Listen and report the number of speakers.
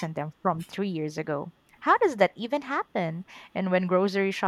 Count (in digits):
1